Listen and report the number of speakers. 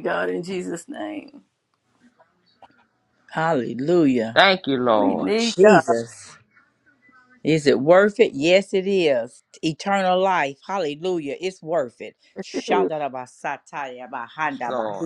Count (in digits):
3